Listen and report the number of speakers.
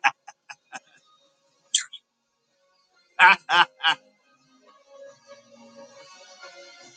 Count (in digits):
0